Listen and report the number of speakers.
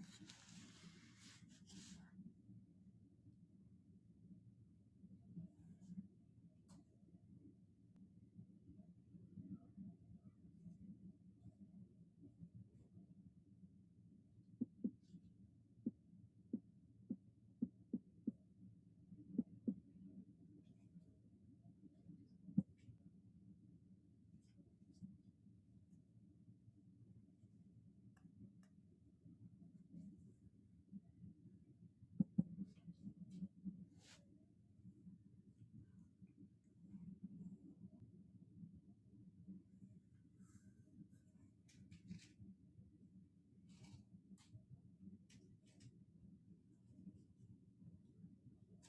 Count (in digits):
0